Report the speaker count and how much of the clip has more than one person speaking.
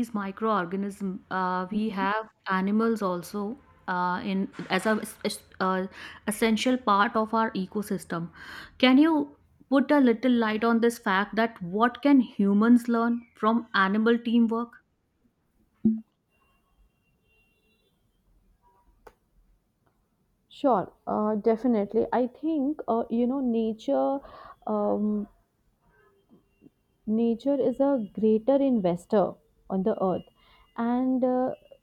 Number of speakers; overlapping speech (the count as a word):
two, no overlap